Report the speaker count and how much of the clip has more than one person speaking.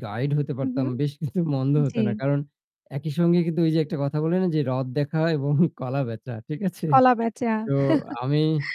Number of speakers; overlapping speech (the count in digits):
2, about 5%